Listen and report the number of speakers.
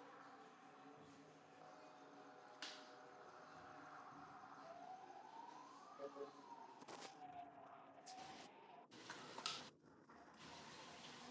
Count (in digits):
0